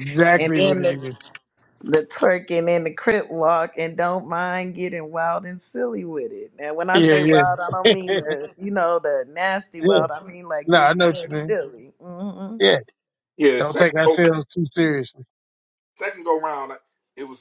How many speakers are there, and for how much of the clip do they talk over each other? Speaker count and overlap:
3, about 18%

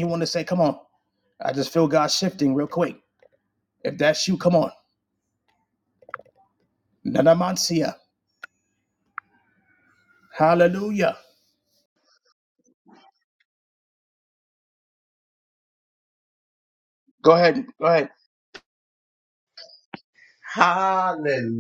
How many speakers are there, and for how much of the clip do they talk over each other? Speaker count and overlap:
2, no overlap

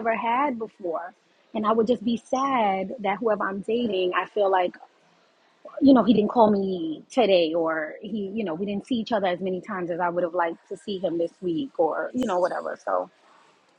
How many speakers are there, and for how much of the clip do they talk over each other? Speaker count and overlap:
1, no overlap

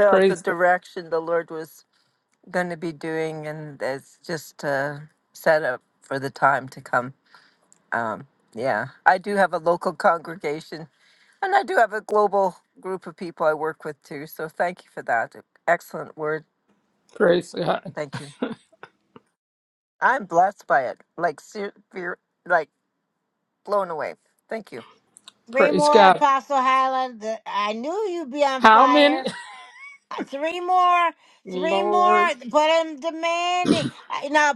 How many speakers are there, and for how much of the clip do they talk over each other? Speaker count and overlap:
3, about 8%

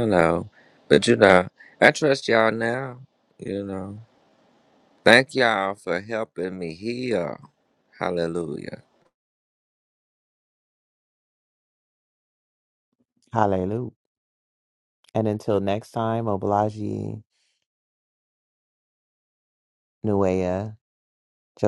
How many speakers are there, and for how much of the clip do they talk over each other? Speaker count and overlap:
2, no overlap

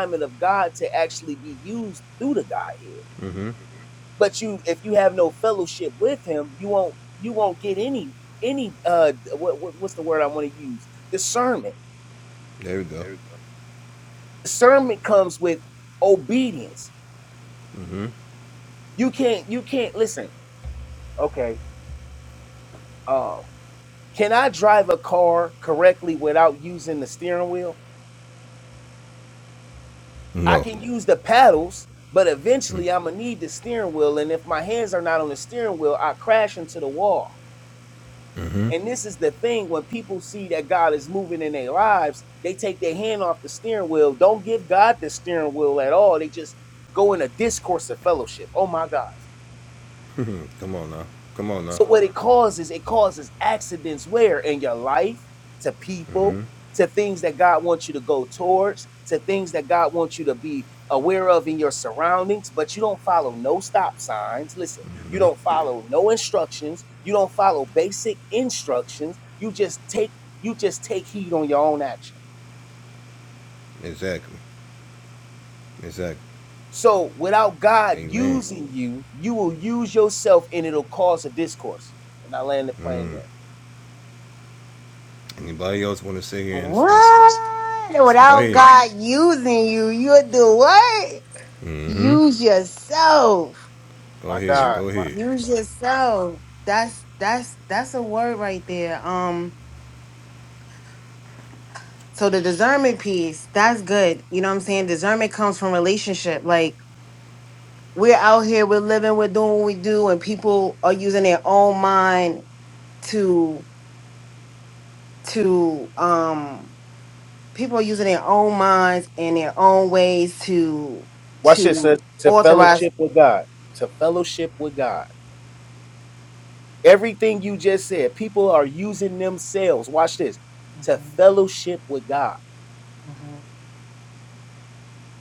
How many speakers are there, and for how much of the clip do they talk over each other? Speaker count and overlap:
3, about 3%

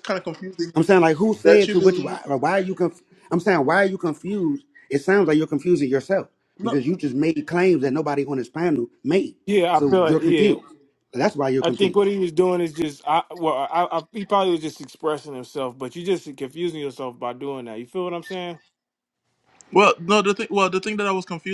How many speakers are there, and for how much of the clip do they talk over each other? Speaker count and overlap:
3, about 9%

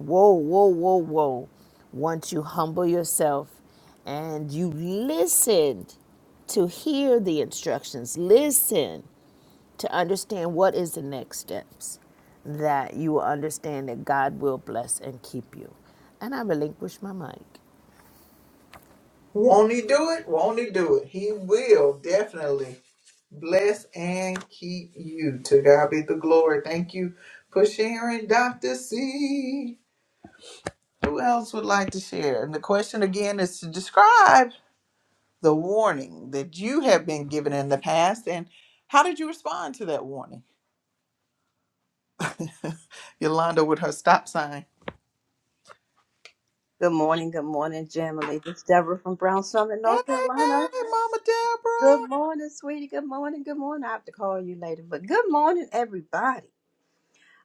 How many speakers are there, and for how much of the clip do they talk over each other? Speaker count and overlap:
3, about 1%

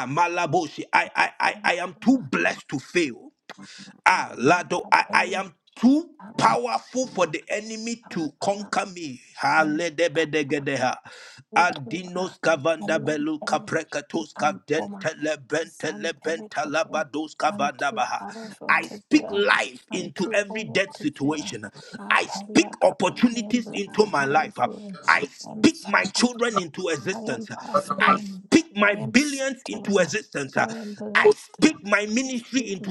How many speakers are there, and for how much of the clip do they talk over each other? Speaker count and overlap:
2, about 49%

